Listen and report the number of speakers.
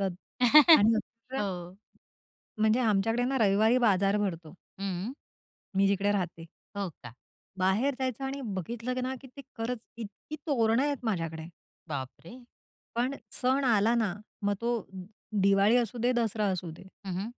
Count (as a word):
two